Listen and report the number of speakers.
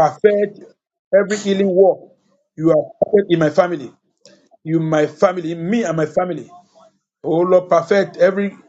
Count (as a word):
one